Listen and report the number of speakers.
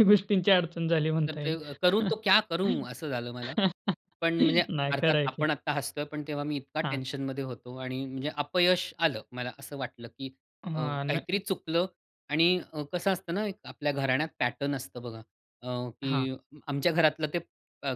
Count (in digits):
2